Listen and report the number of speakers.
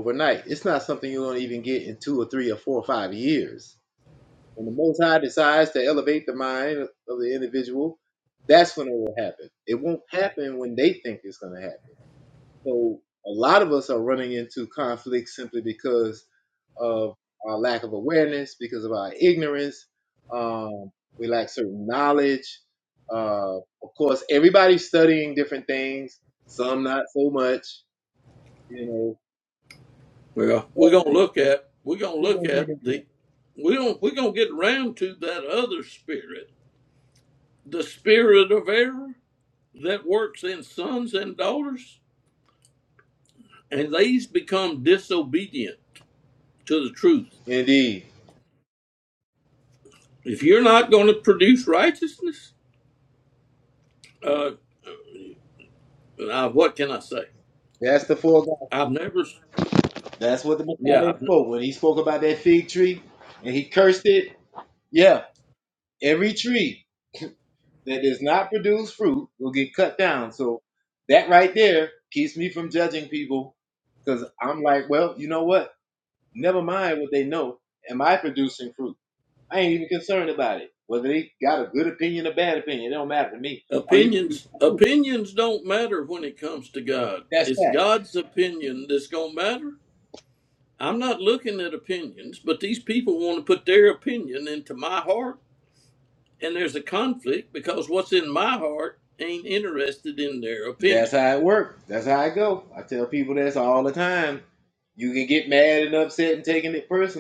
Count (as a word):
two